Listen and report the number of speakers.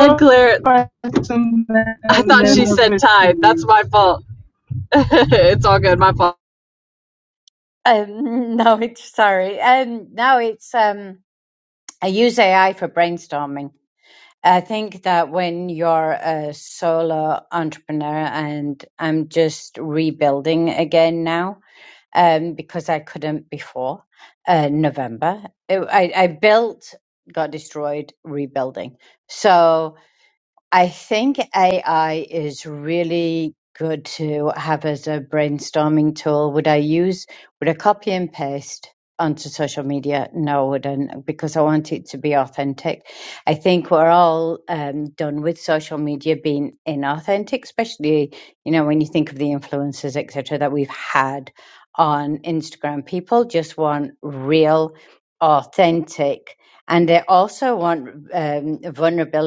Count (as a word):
three